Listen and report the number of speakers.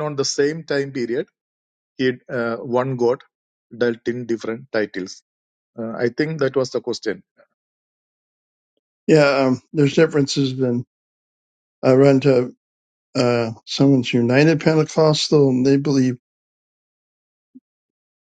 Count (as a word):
two